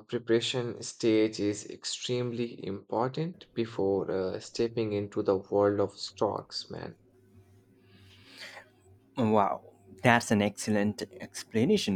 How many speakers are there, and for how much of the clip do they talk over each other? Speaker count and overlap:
2, no overlap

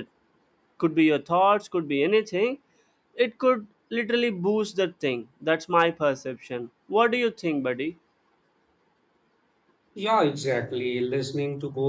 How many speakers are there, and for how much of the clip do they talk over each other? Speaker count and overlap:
2, no overlap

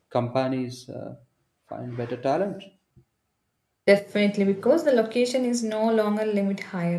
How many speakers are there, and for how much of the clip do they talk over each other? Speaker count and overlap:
2, no overlap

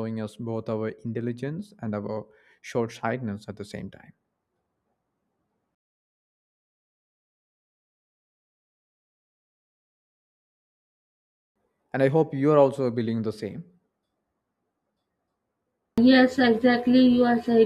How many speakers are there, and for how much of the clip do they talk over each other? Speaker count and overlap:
2, no overlap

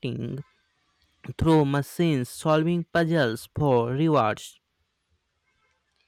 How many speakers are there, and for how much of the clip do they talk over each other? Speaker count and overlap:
1, no overlap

